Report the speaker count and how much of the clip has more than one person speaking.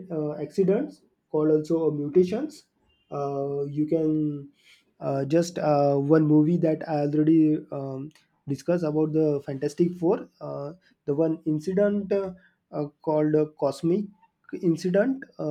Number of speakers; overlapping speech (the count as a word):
one, no overlap